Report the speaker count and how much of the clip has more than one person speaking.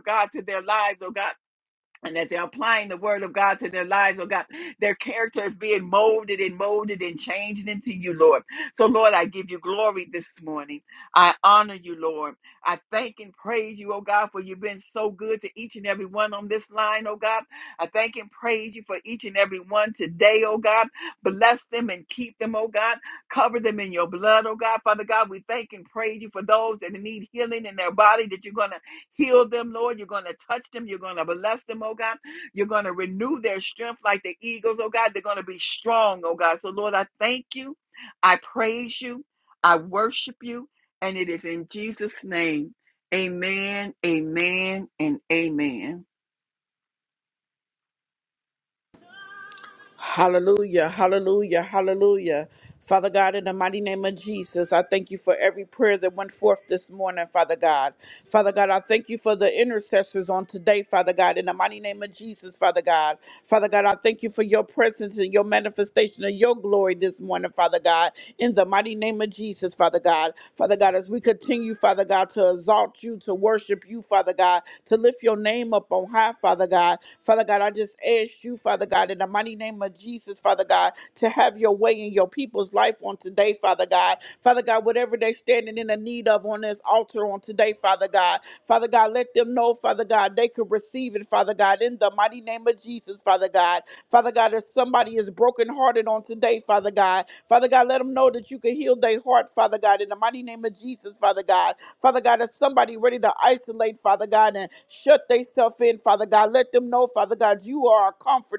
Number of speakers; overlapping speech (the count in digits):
2, no overlap